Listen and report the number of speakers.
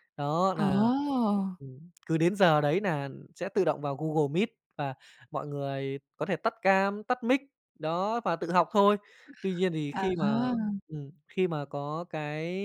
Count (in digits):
2